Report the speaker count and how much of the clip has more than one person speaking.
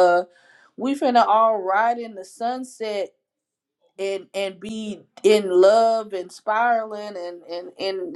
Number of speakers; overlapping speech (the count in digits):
1, no overlap